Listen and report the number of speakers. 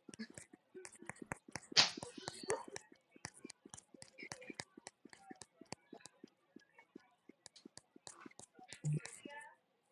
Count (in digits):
0